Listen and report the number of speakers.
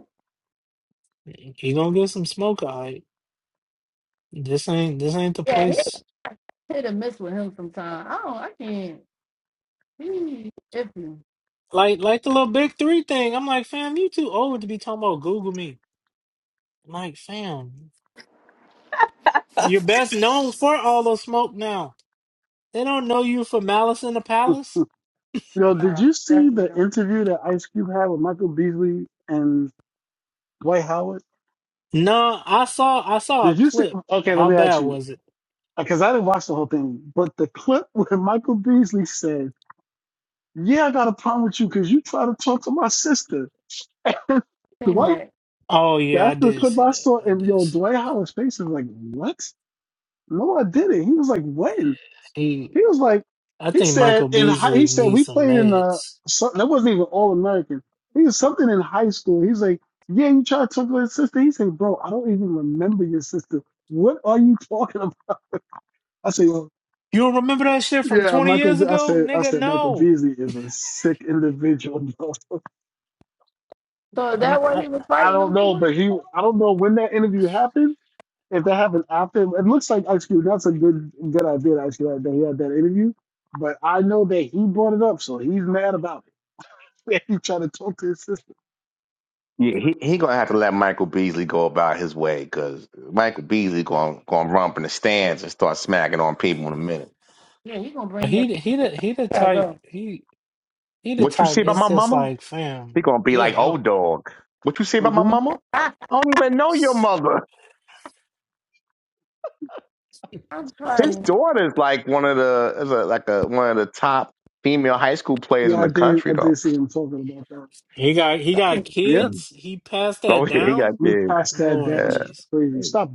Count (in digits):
4